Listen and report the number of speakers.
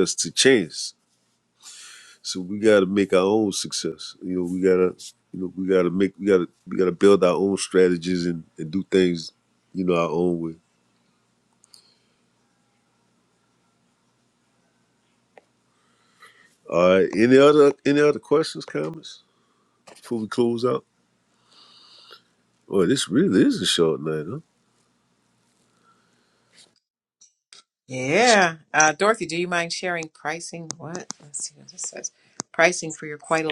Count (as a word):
two